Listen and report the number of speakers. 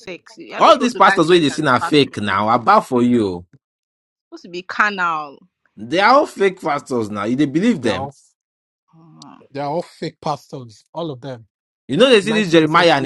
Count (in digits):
3